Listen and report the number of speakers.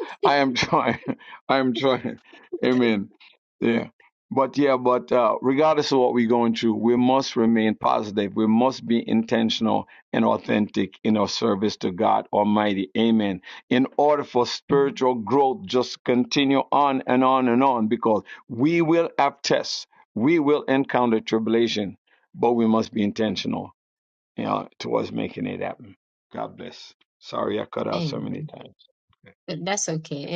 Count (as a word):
two